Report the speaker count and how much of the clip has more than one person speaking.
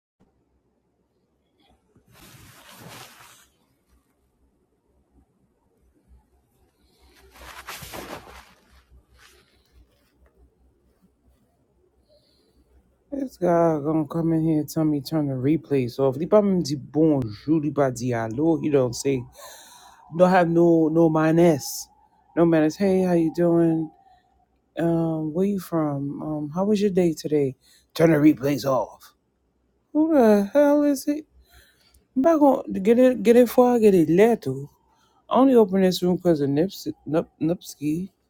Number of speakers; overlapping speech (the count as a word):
one, no overlap